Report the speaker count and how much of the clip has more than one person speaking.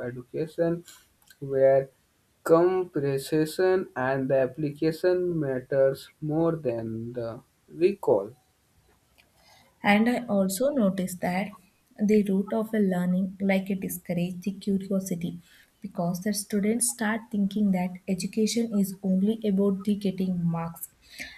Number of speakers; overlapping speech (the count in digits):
2, no overlap